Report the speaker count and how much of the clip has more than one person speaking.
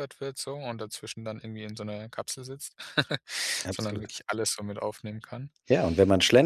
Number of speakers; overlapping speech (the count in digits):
2, about 7%